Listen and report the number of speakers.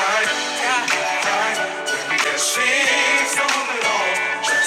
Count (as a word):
zero